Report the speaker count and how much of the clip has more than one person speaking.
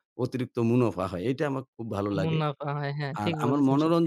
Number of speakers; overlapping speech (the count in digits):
2, about 28%